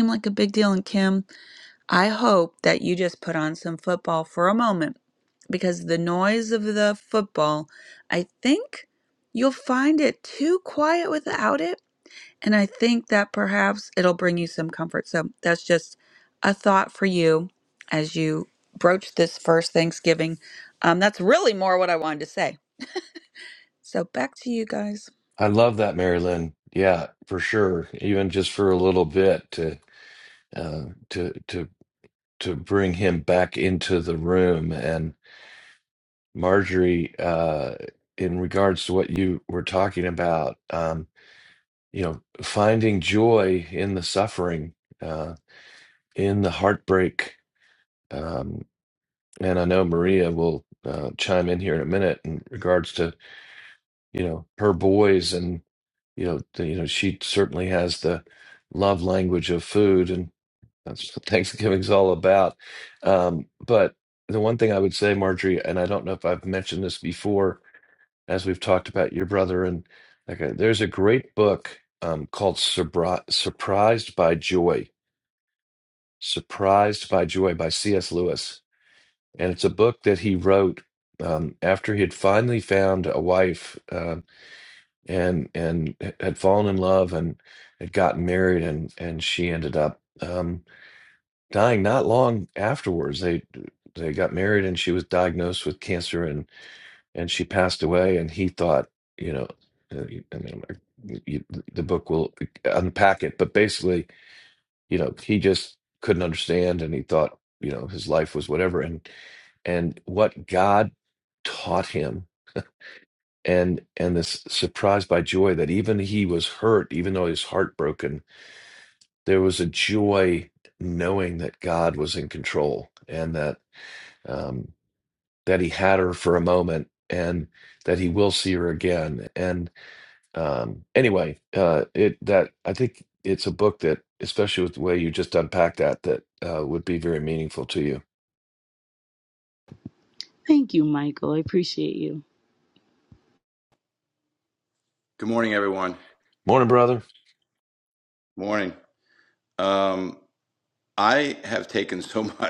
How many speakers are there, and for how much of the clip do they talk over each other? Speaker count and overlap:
4, no overlap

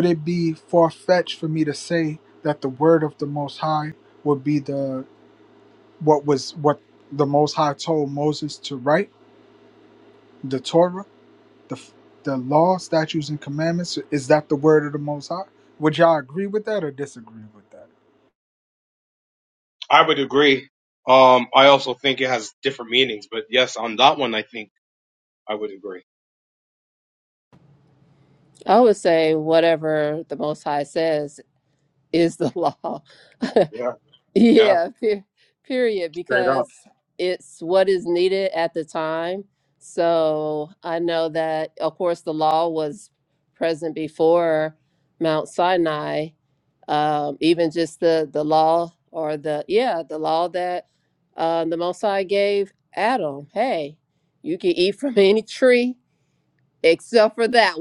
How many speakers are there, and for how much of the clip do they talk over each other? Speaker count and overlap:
3, about 1%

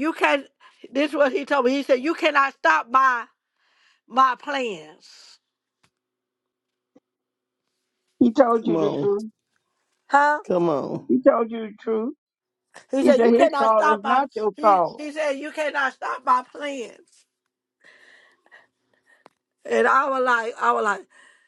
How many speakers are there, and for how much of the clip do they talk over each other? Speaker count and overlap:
3, about 10%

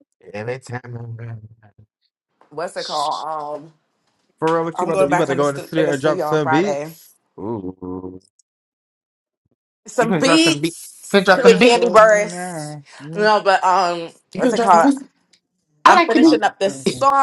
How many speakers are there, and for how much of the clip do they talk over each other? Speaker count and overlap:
3, about 34%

